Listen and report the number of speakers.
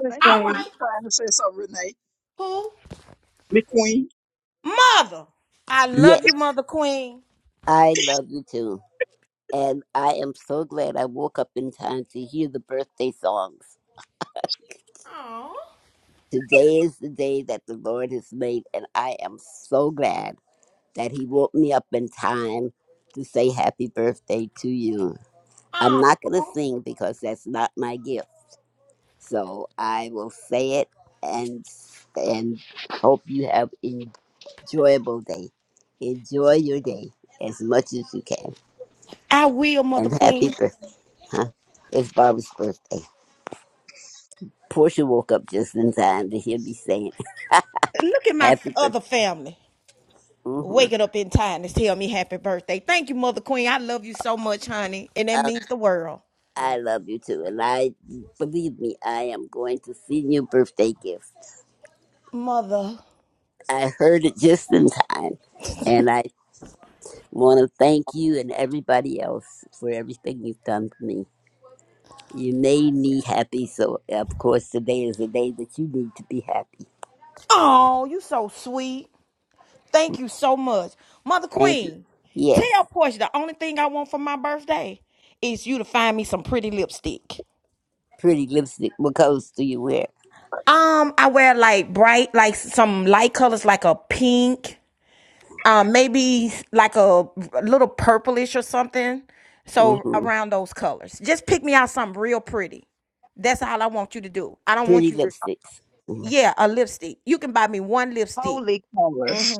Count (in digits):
4